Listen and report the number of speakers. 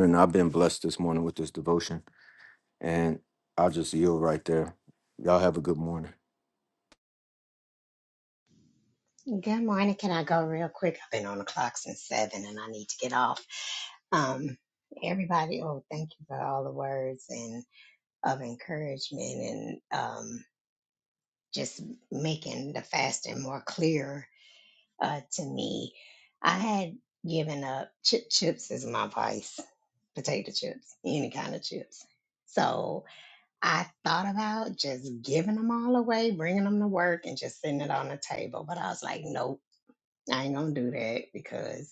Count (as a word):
two